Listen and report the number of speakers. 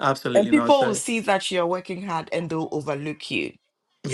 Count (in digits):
2